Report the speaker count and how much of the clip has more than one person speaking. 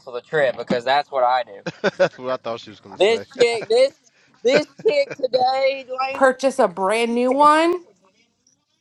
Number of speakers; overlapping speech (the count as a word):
three, about 5%